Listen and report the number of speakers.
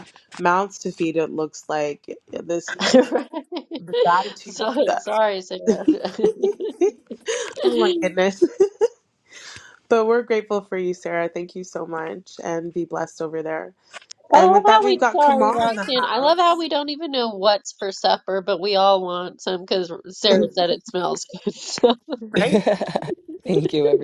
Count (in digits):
3